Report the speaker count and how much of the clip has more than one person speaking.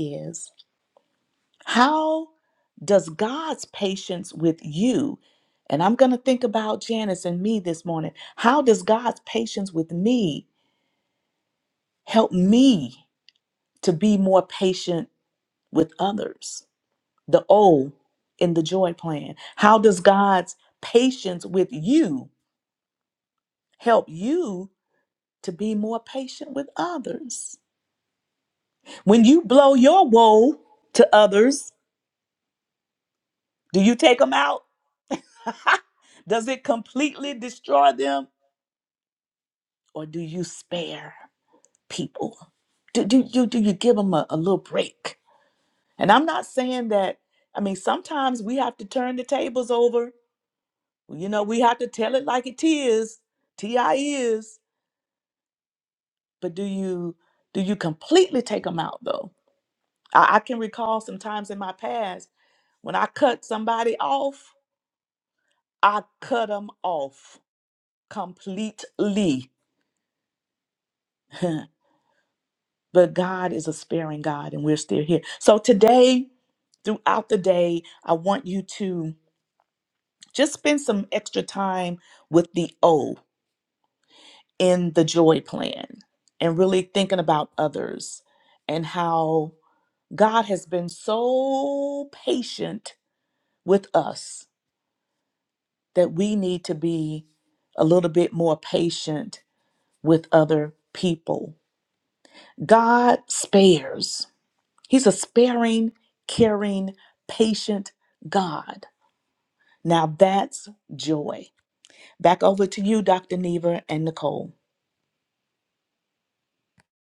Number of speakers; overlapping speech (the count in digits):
1, no overlap